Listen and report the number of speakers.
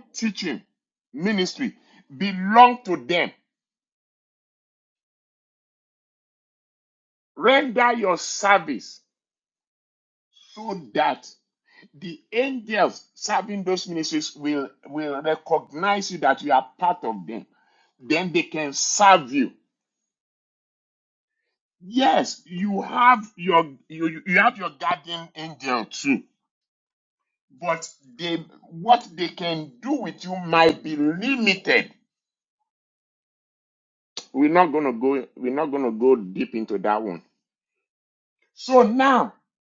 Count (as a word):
one